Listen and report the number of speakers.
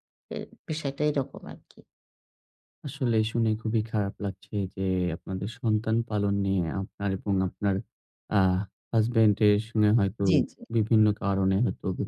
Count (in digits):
2